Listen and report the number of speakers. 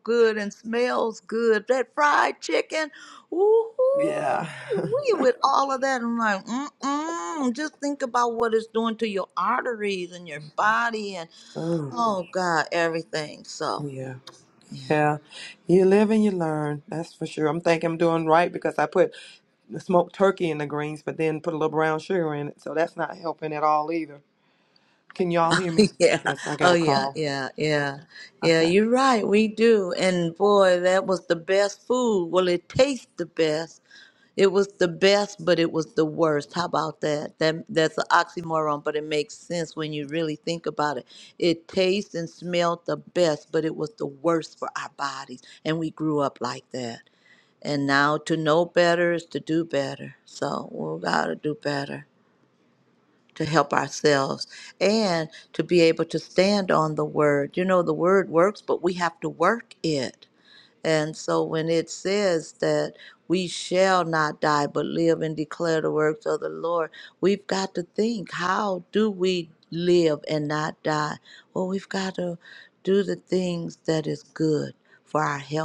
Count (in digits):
2